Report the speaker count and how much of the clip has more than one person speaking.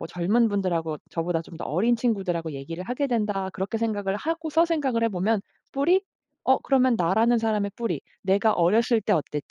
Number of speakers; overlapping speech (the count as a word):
one, no overlap